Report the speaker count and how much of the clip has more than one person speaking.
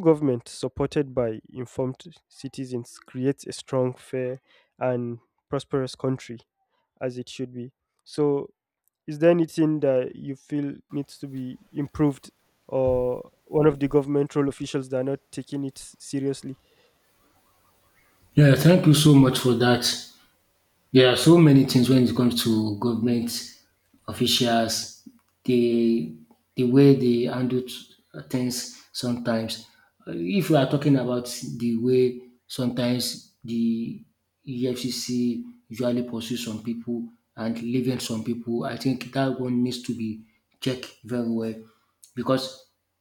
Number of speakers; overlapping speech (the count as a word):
two, no overlap